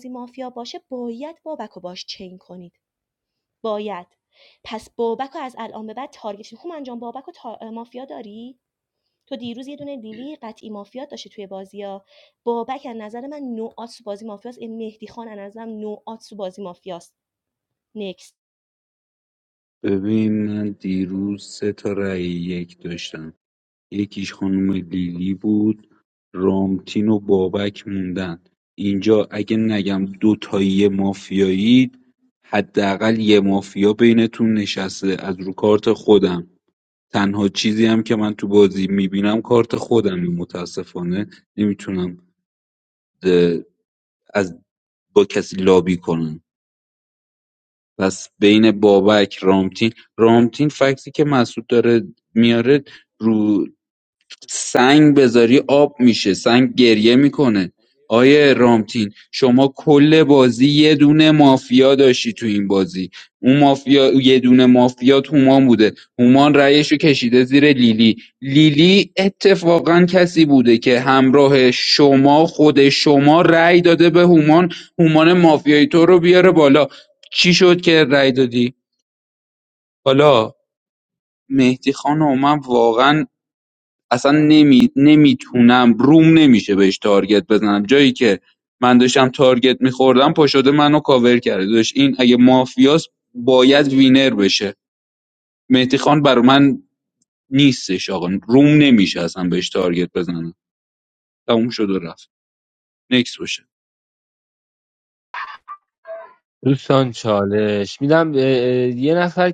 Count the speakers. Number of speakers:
three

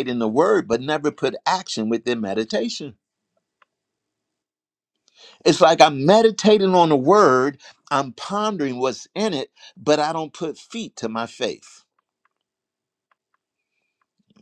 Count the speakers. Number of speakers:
one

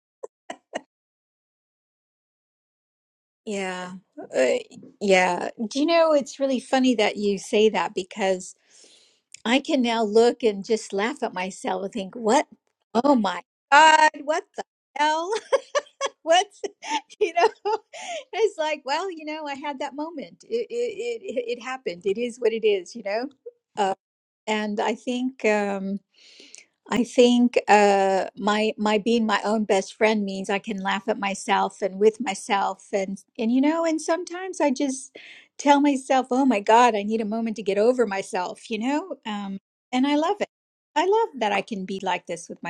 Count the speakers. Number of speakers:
one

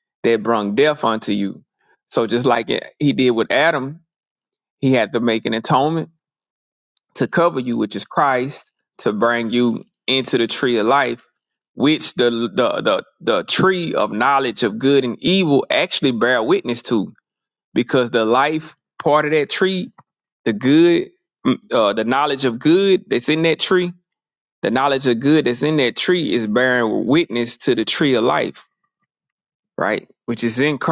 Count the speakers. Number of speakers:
one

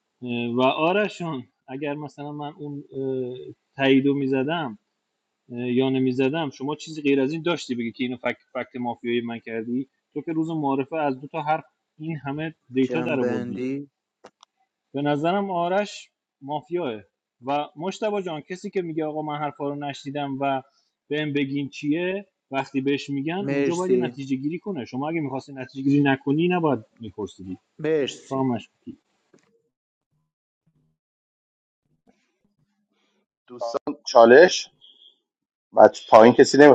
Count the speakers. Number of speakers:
three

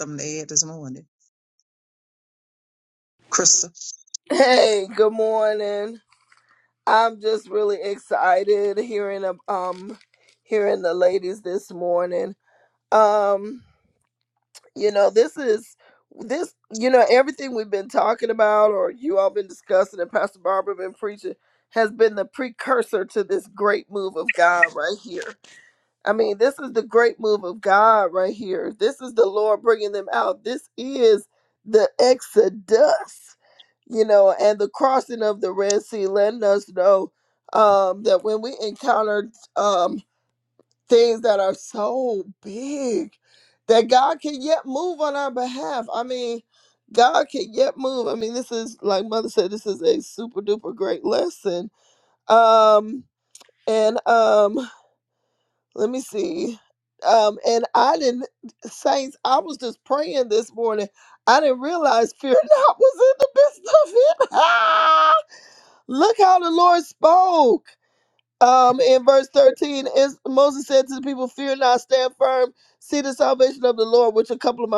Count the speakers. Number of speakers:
two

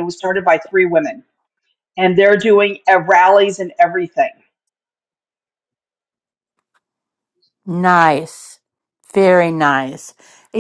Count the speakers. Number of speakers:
two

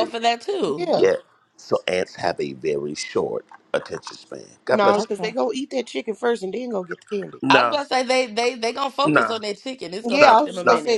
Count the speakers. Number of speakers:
three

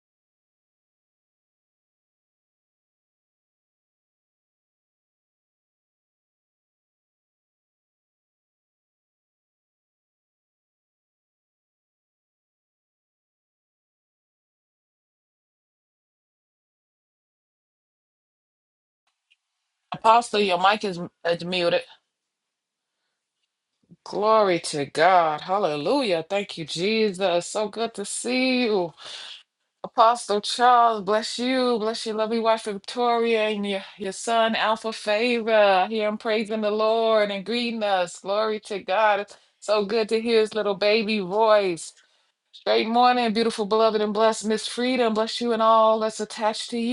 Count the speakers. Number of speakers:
one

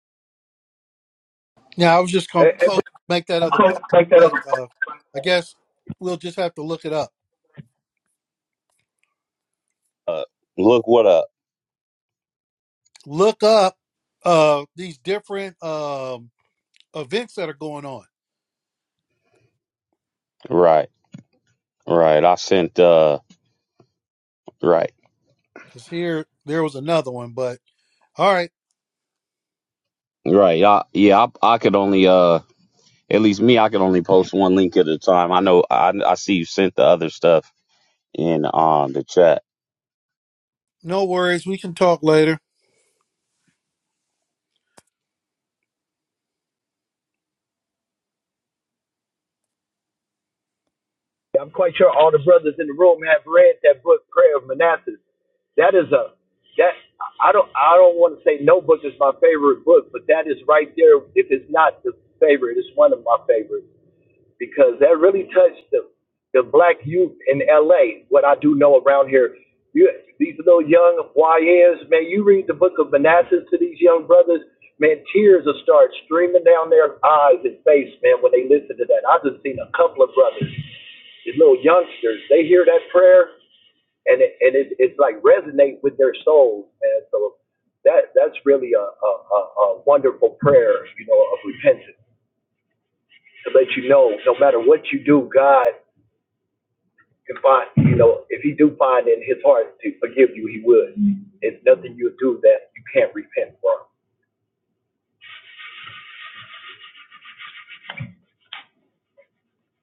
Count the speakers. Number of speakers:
three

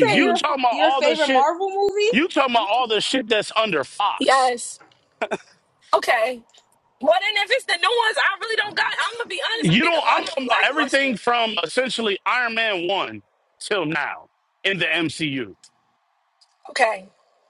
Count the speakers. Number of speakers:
three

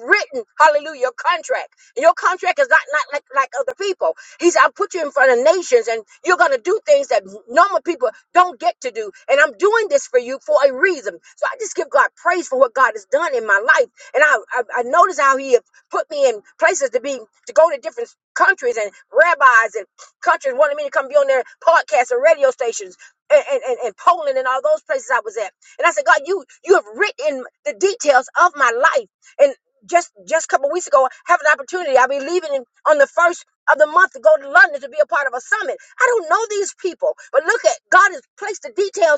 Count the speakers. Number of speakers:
one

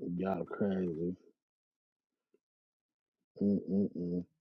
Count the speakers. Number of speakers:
one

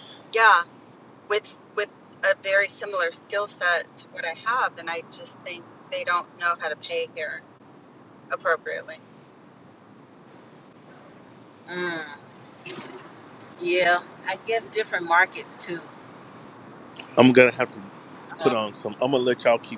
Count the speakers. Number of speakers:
three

